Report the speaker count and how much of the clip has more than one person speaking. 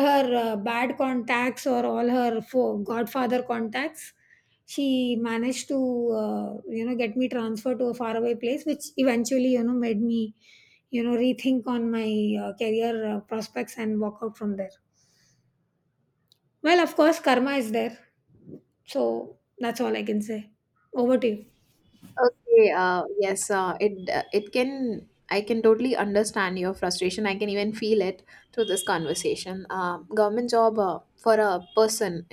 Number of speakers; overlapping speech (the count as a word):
two, no overlap